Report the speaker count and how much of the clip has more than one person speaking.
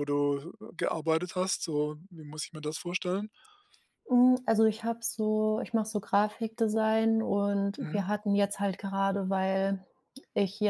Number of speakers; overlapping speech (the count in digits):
2, about 2%